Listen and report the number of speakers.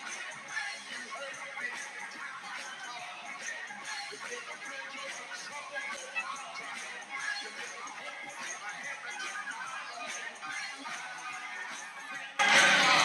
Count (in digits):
0